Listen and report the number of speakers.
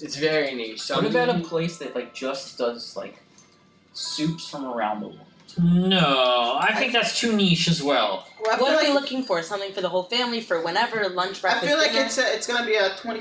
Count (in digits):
5